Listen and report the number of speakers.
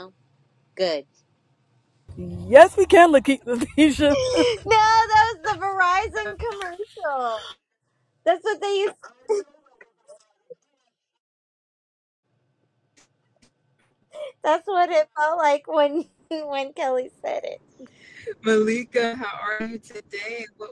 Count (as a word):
three